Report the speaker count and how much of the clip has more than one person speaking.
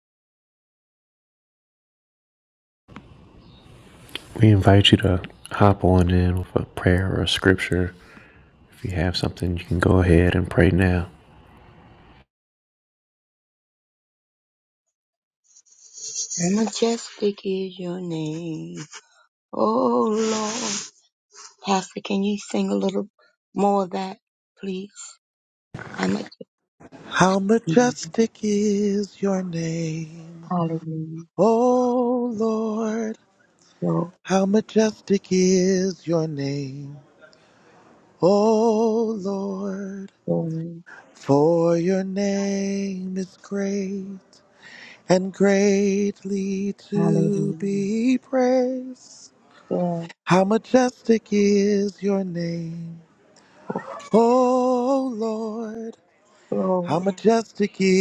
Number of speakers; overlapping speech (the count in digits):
3, about 2%